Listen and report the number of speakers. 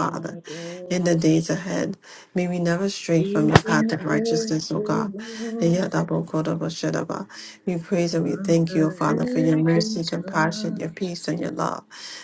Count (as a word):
two